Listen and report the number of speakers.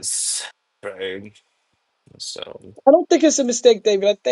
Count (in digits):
2